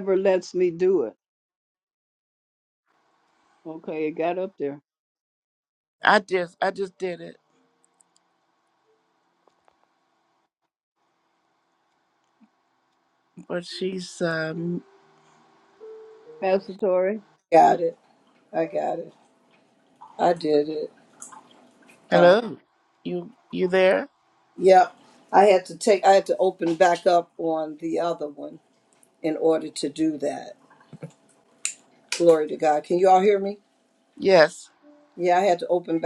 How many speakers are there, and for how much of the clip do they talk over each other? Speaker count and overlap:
3, about 1%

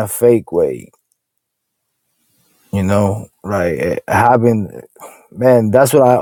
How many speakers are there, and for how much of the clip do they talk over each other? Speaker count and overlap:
1, no overlap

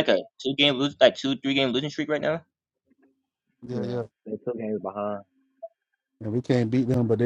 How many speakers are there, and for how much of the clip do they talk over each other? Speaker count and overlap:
3, about 5%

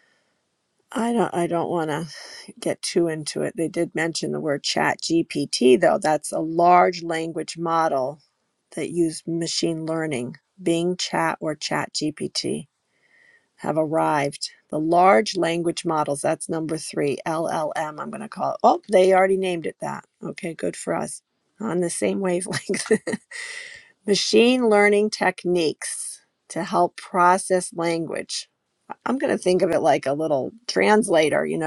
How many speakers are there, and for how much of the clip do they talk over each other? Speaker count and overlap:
1, no overlap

